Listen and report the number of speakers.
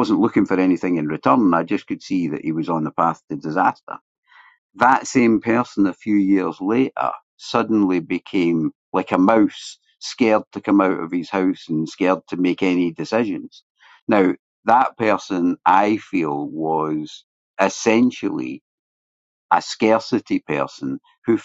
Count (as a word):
one